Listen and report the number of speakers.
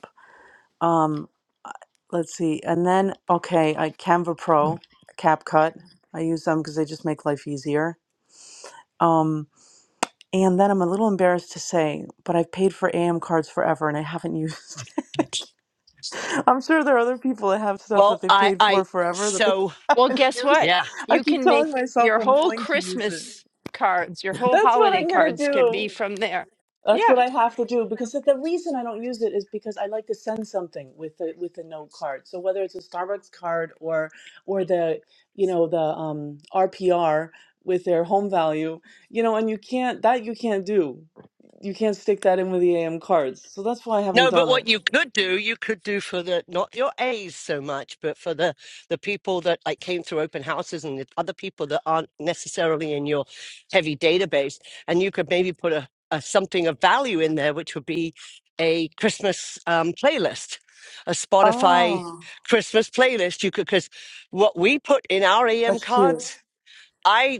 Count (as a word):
three